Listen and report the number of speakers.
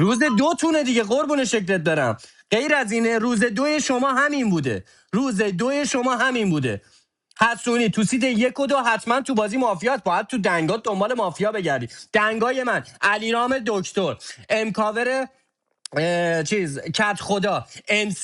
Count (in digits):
1